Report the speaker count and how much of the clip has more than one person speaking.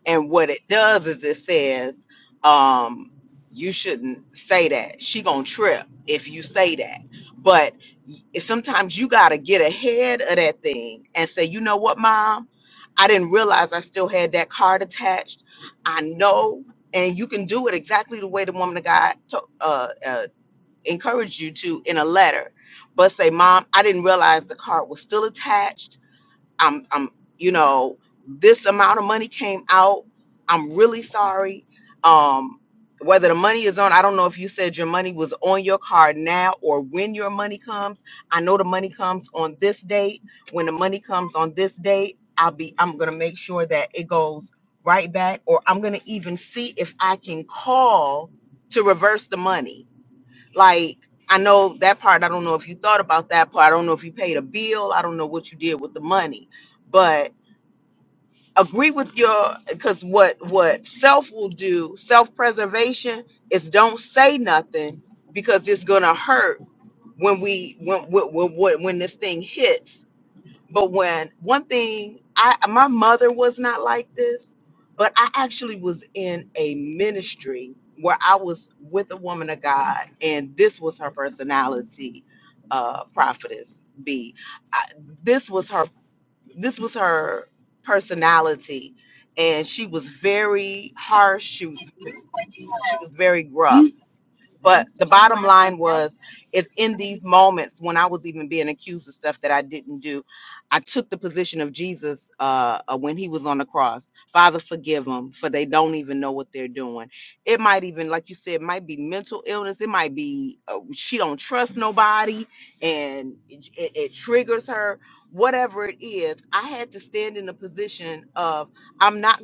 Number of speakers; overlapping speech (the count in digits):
1, no overlap